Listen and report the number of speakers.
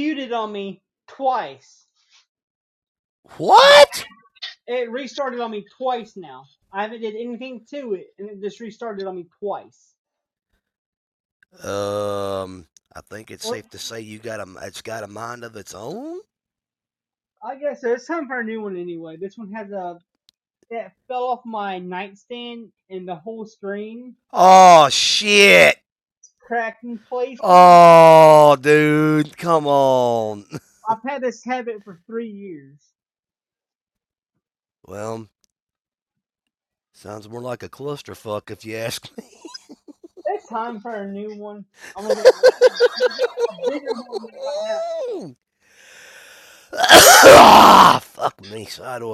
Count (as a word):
two